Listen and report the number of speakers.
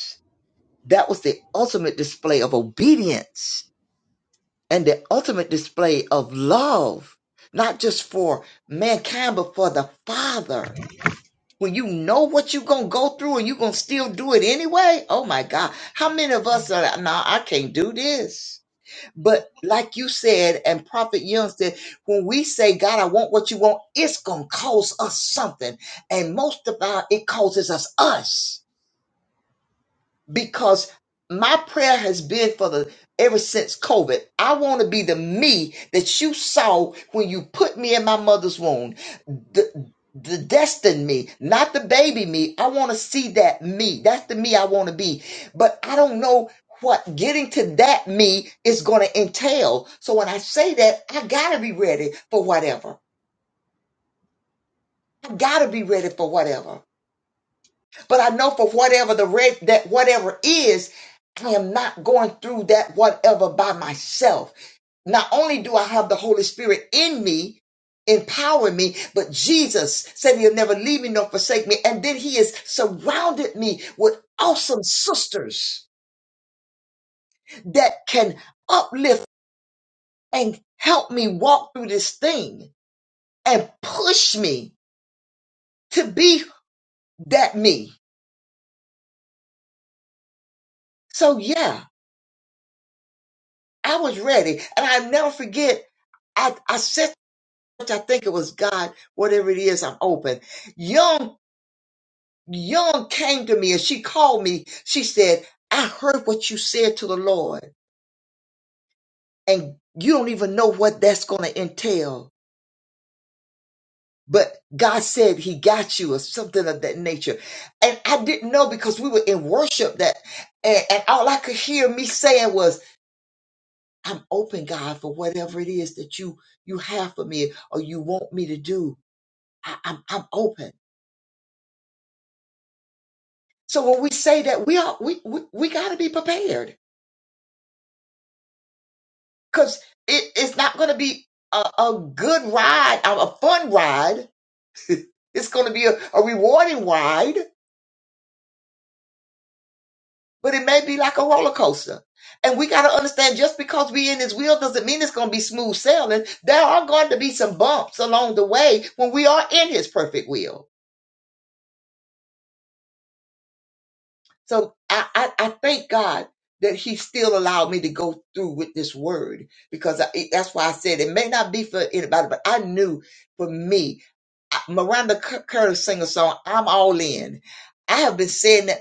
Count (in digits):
1